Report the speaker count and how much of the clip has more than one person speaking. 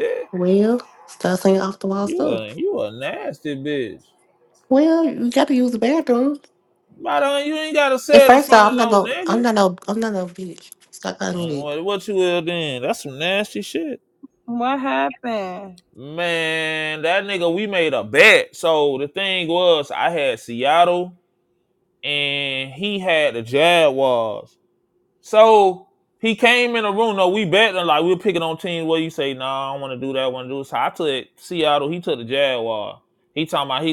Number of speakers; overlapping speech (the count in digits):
3, about 6%